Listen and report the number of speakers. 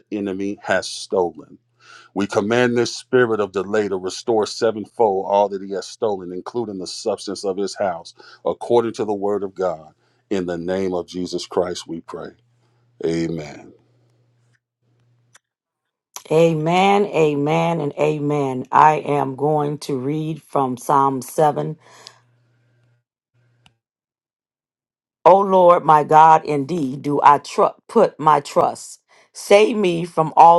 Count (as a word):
two